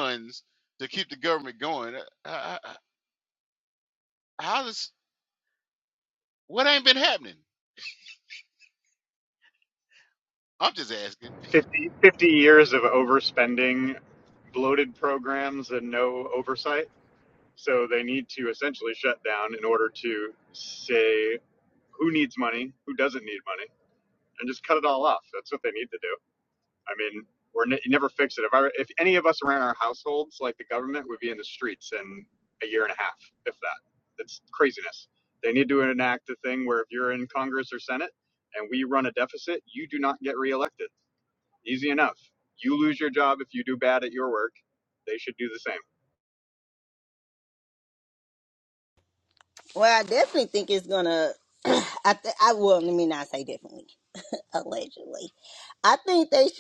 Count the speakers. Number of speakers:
3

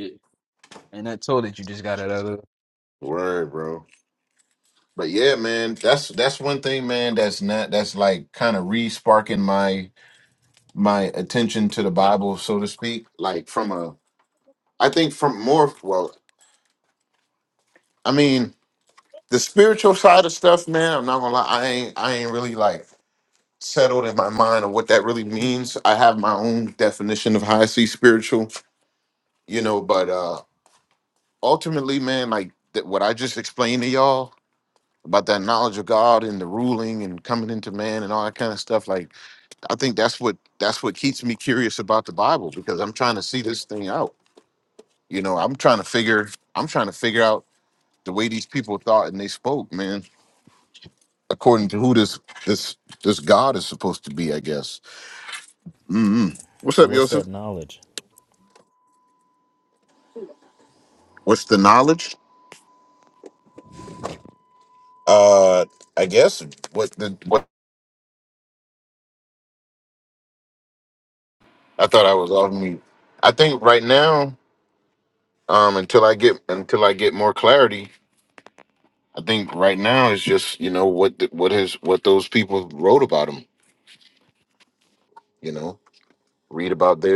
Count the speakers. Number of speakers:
3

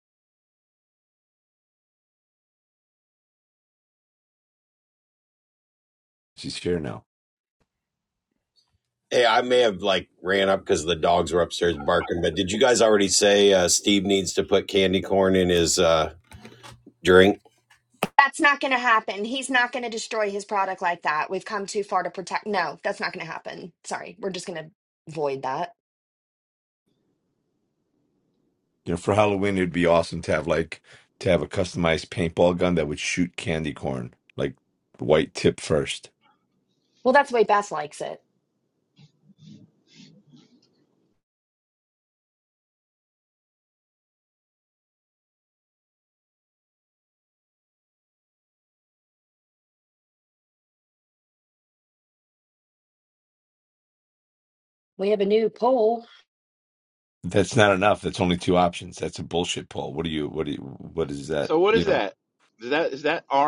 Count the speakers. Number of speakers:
4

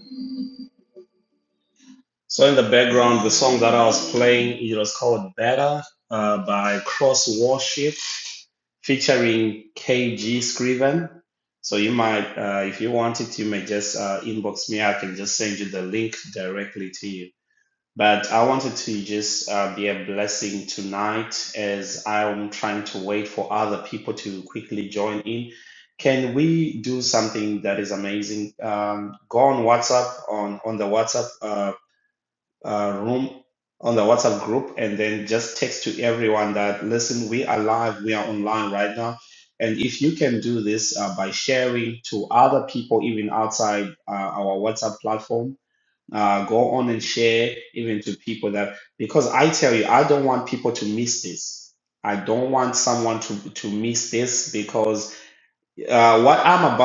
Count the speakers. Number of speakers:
1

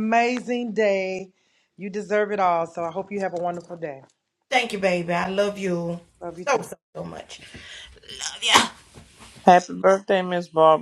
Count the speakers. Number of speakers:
3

